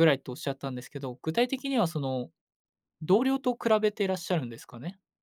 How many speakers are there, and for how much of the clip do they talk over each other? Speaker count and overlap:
one, no overlap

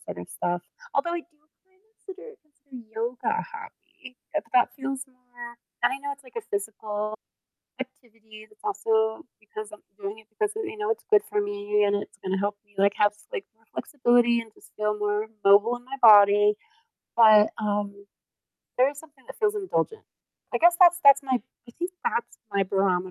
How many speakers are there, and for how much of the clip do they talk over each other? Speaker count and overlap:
one, no overlap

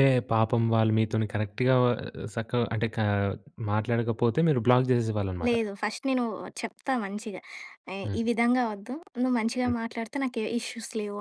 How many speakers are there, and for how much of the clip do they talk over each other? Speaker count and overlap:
two, about 4%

